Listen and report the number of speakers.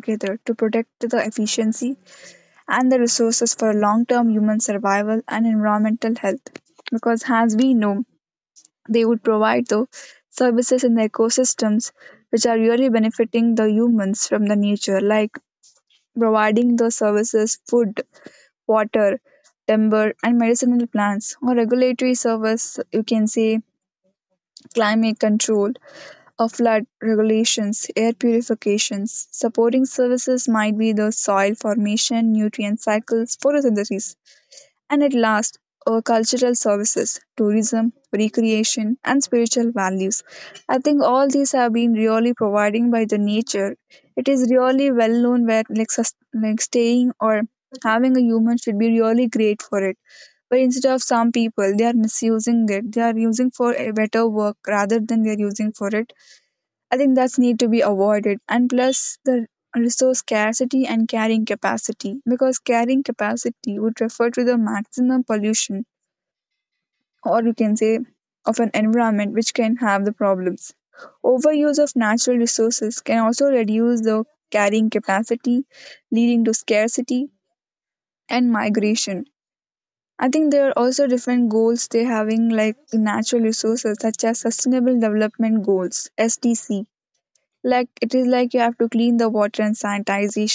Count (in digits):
1